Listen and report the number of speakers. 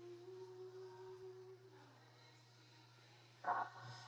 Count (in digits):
0